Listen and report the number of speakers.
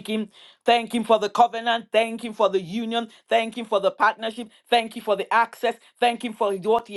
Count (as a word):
one